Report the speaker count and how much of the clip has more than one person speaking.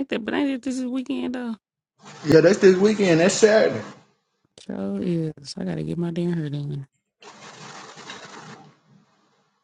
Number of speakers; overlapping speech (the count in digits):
2, no overlap